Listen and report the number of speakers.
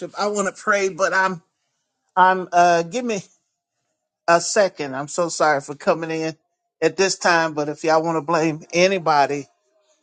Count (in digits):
1